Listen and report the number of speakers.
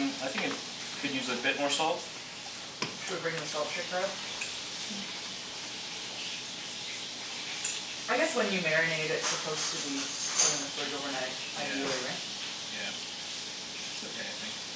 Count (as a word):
two